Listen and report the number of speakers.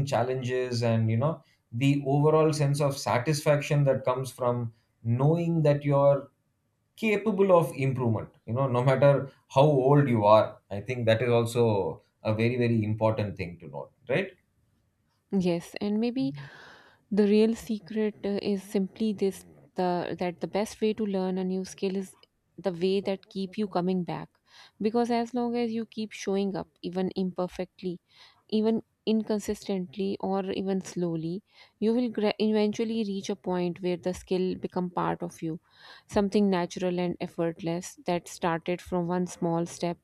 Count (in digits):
2